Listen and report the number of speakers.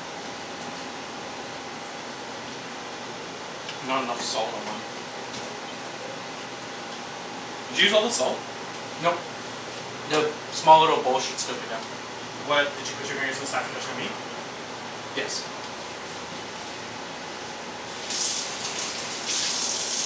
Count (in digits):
2